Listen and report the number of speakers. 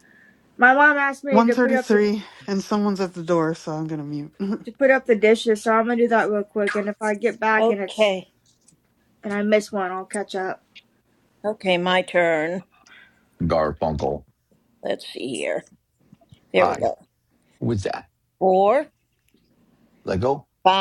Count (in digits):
4